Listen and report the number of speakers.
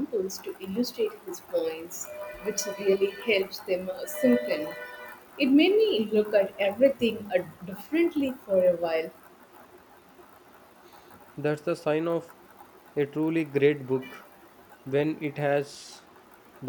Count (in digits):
2